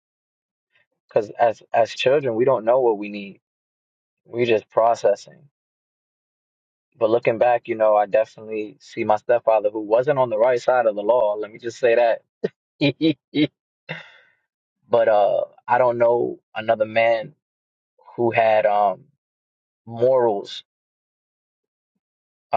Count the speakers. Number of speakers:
one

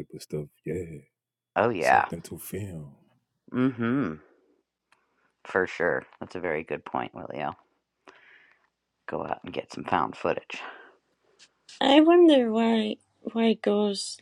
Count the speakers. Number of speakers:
three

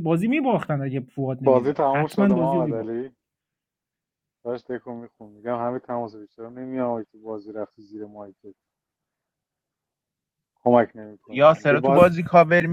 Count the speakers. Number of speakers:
three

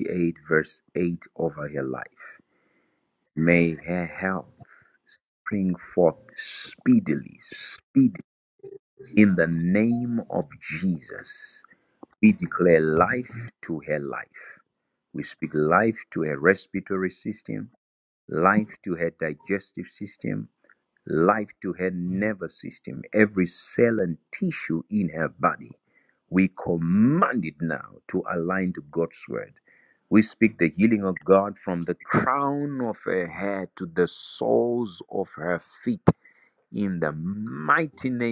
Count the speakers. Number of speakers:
one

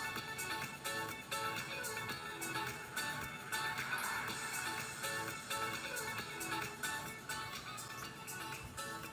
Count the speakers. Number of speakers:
zero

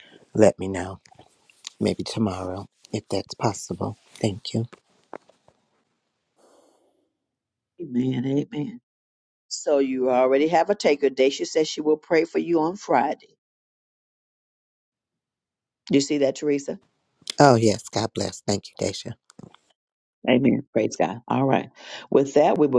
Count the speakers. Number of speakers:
two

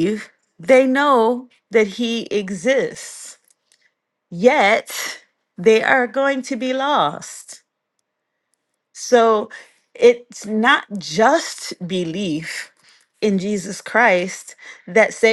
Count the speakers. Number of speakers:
one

